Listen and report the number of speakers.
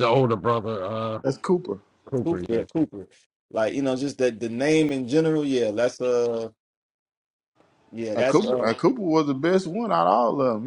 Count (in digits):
3